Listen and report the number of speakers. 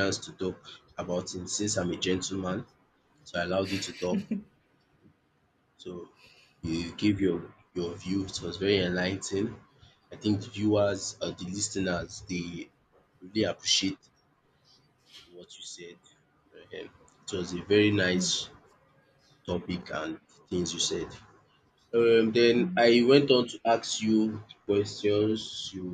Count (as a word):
one